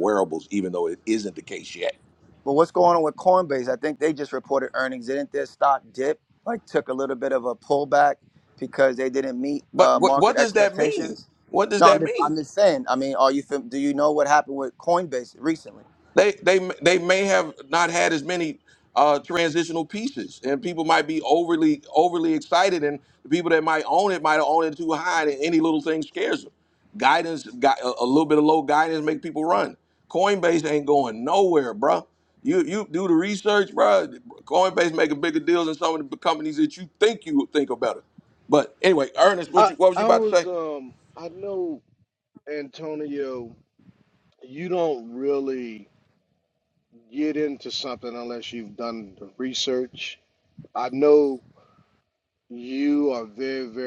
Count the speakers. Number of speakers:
three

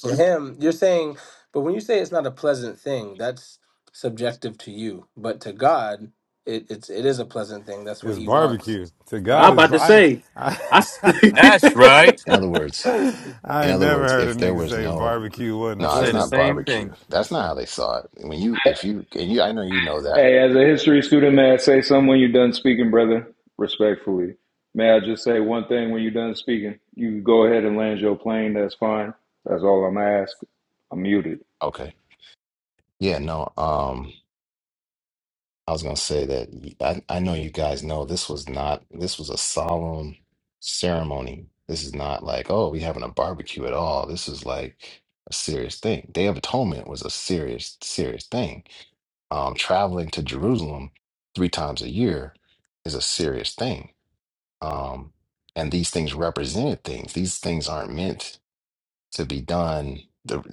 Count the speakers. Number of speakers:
six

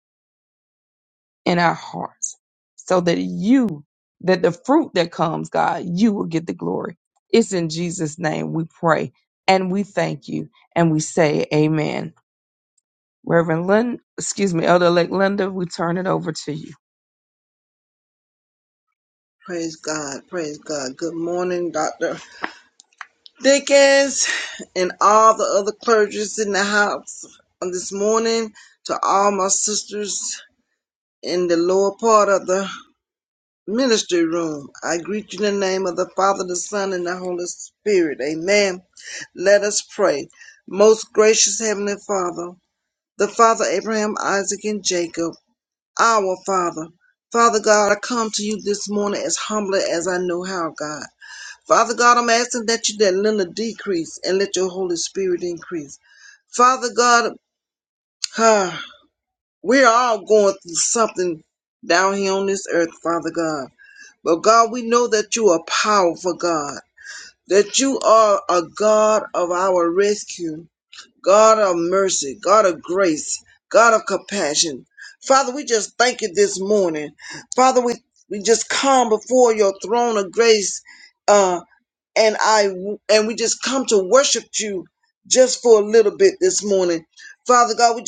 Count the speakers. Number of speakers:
two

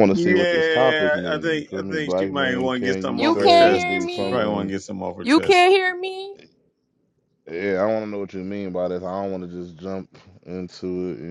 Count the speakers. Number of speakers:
three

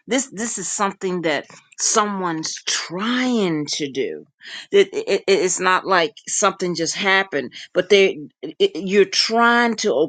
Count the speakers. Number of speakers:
one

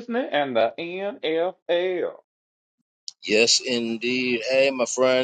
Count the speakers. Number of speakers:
two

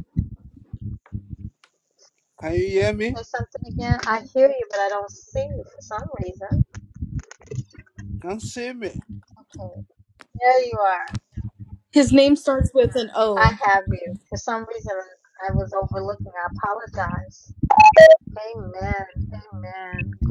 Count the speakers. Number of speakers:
three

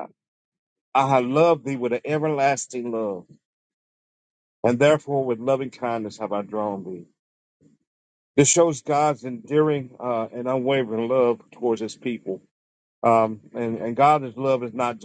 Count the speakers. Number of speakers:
one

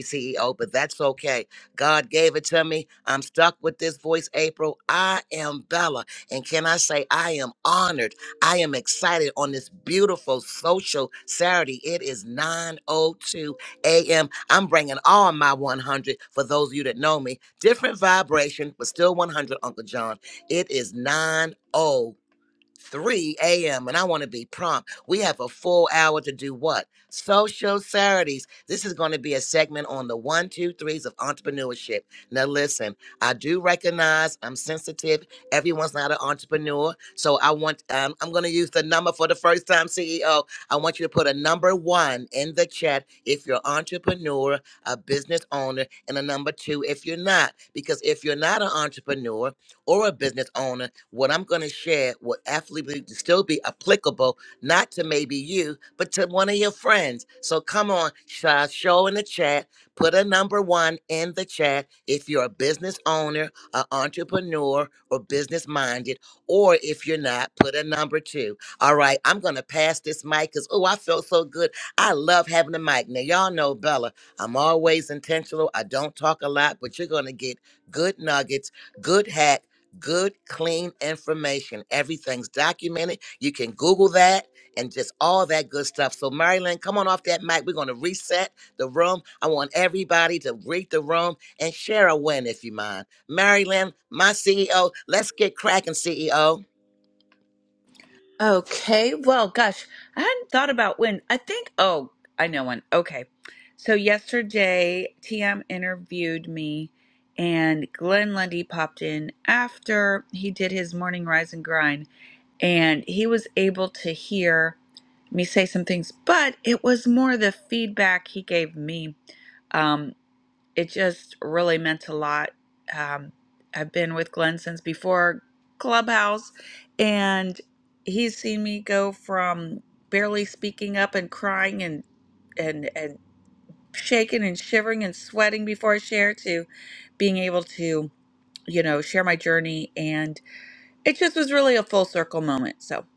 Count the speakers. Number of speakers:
two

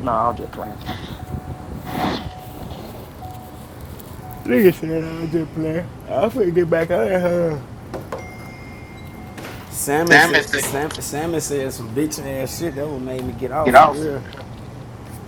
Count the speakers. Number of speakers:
two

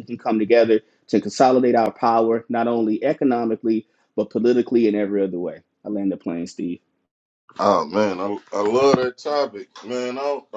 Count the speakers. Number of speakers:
two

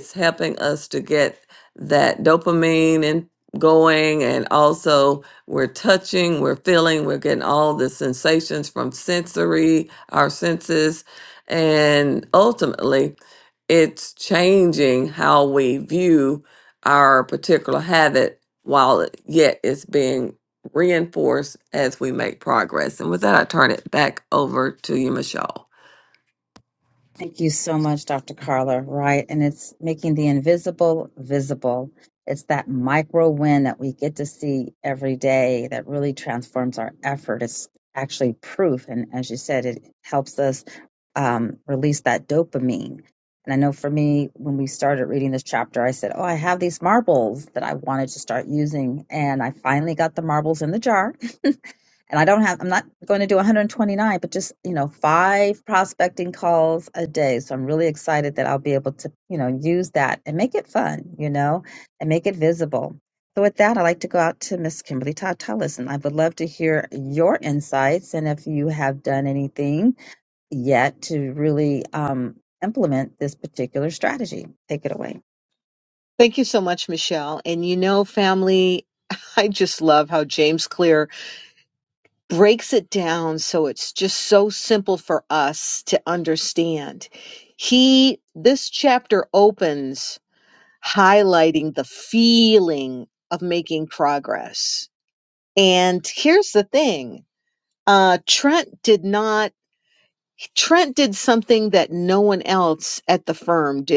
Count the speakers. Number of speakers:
three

